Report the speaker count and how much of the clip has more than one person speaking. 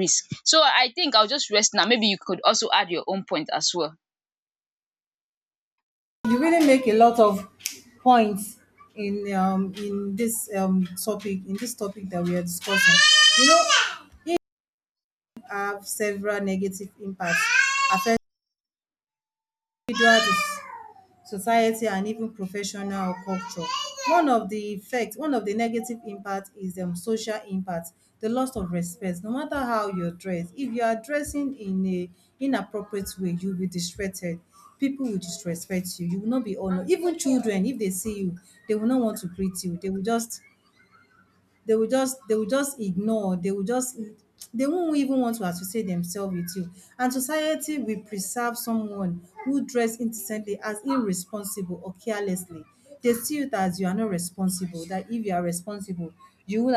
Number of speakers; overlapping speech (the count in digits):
2, no overlap